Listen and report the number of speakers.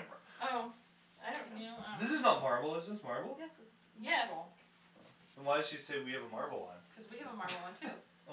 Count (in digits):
3